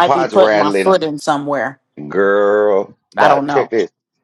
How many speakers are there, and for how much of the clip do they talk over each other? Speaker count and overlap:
two, about 35%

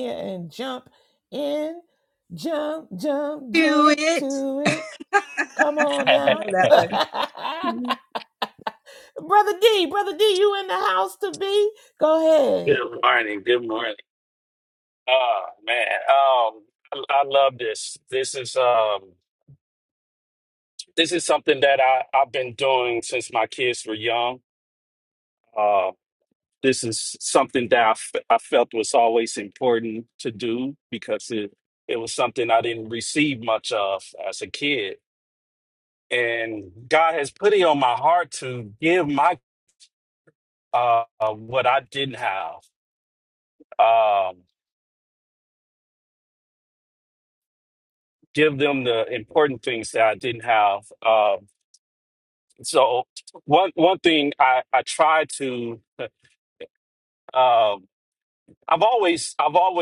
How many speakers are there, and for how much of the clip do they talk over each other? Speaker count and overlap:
three, about 2%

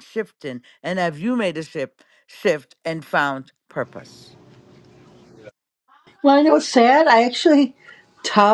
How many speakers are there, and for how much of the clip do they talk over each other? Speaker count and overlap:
two, no overlap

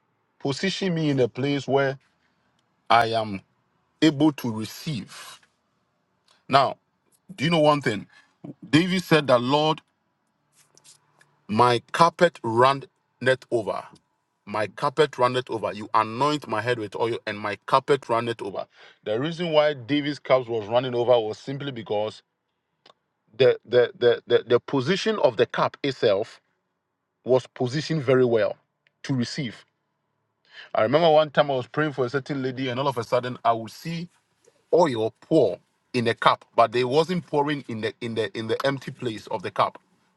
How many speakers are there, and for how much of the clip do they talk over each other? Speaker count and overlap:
one, no overlap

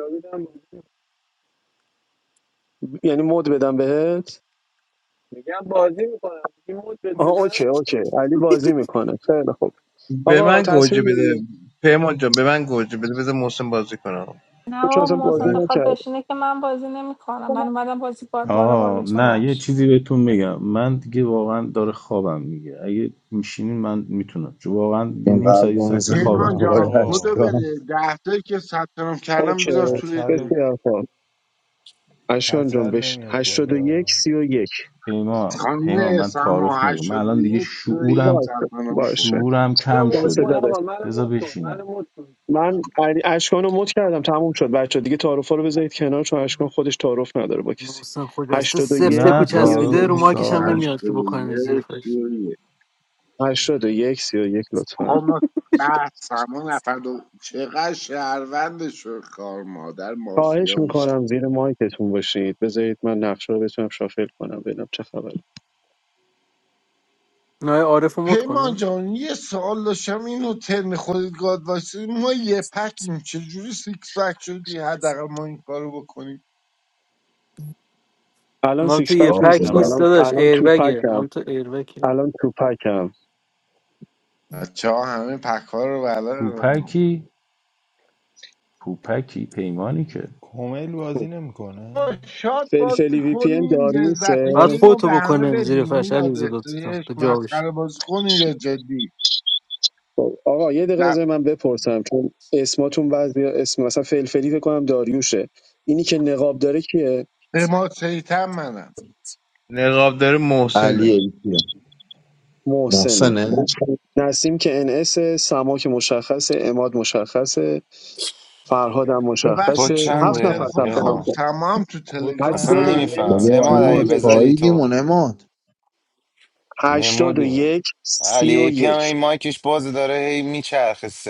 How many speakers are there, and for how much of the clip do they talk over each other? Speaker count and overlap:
ten, about 26%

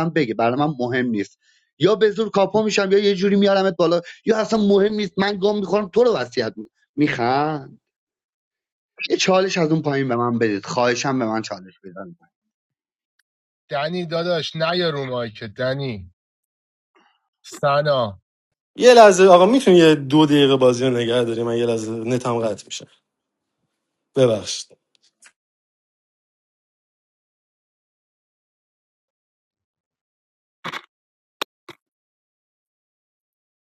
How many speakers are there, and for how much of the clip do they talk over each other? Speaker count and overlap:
three, no overlap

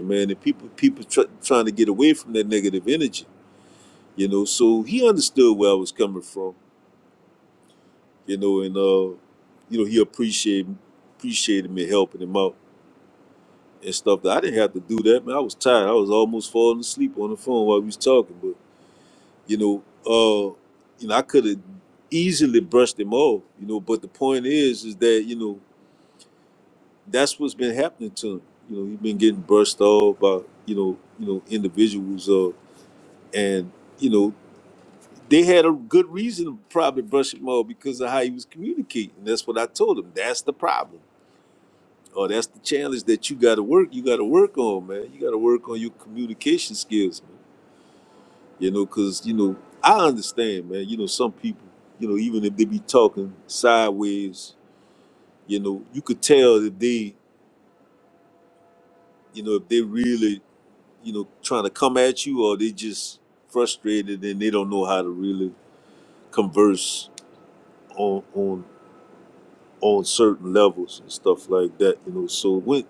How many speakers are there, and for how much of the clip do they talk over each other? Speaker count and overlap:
one, no overlap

